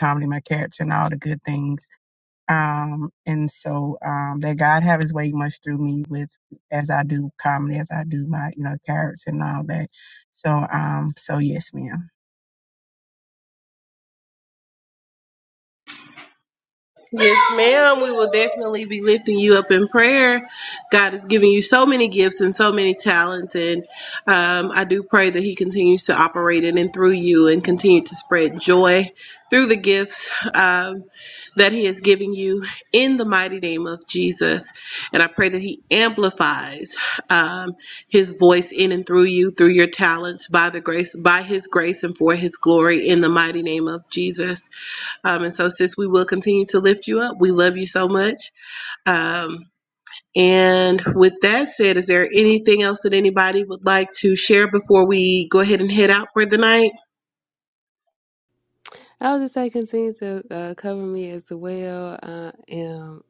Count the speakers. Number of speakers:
three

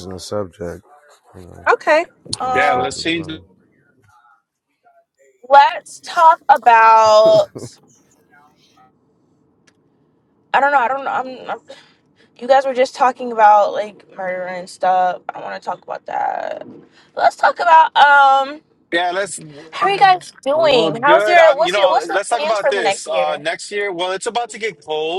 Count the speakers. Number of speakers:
three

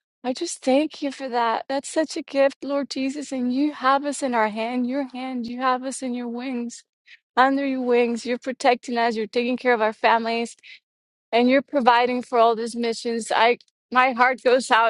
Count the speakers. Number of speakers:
one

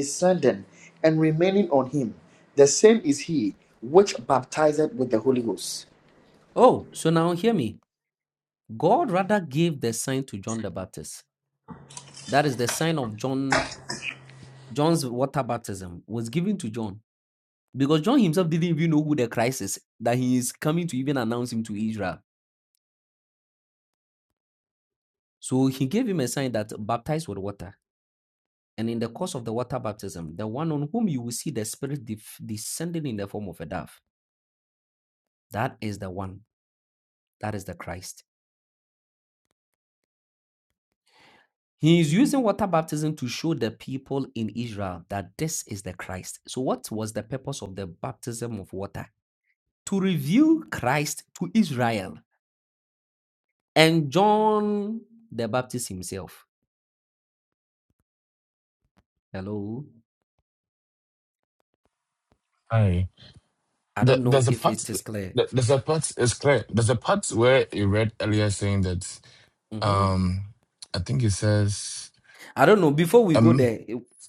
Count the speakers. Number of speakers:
three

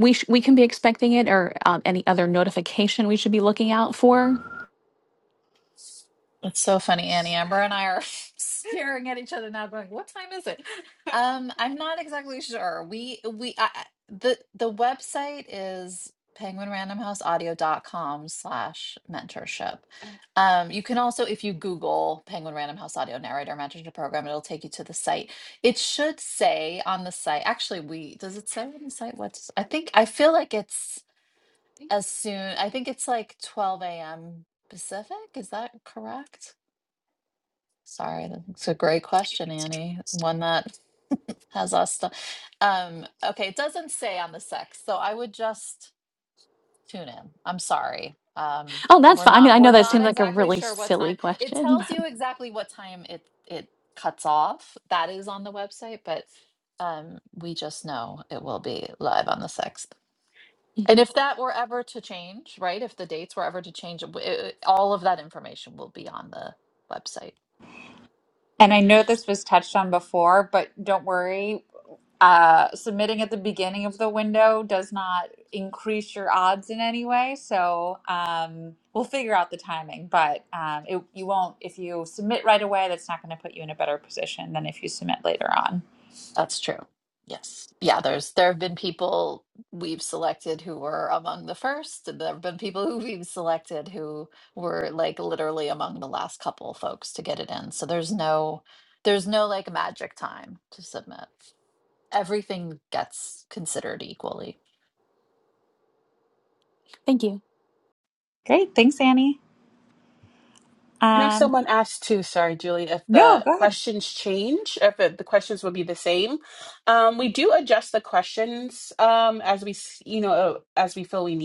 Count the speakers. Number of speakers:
four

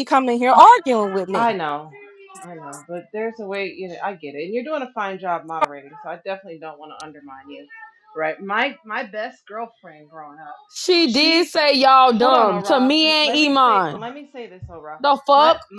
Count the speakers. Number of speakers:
three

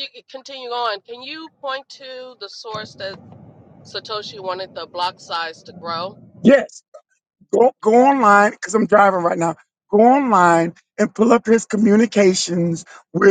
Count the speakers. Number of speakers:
two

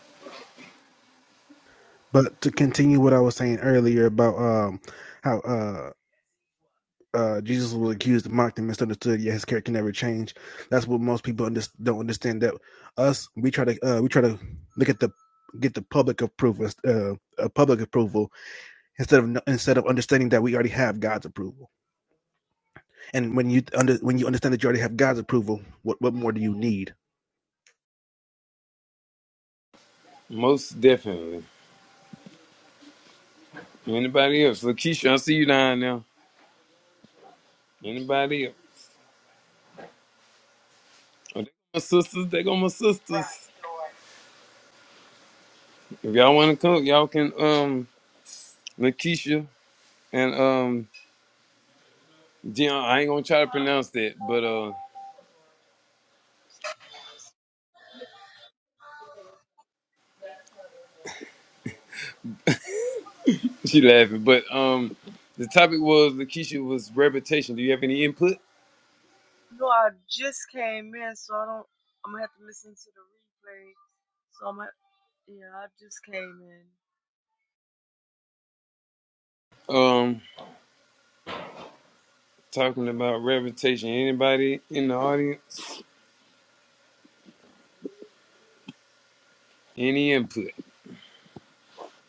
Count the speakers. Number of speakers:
three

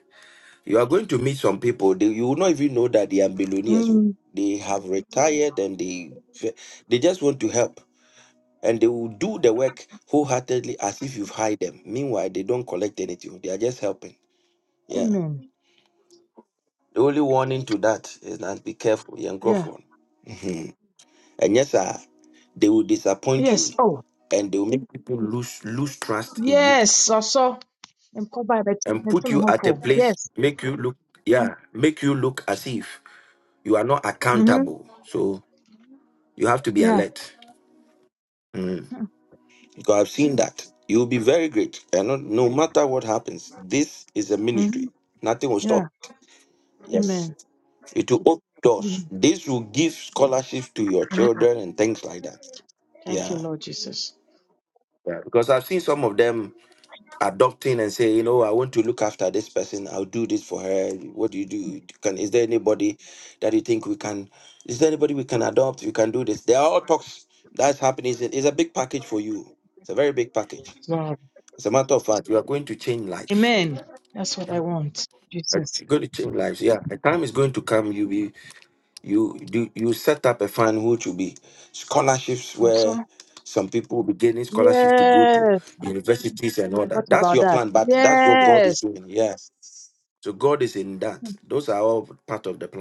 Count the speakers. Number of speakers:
two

